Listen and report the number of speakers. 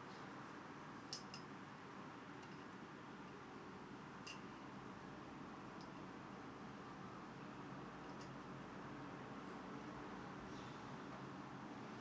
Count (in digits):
0